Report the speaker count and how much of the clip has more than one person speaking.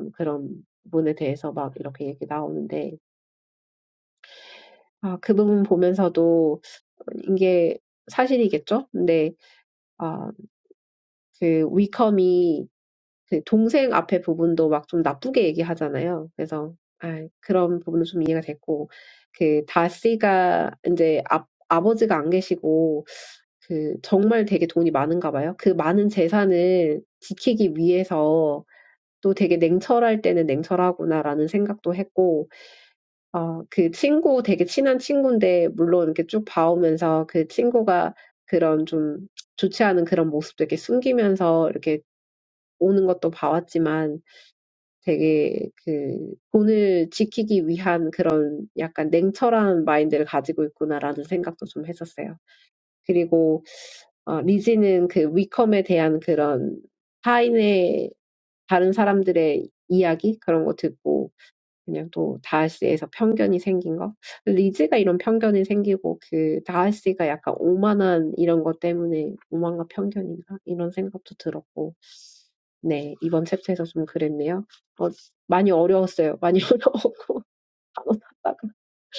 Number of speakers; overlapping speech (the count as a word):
one, no overlap